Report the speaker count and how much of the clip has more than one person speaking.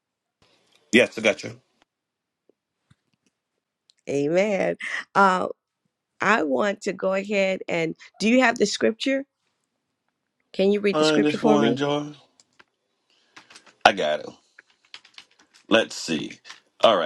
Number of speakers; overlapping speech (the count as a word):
two, about 5%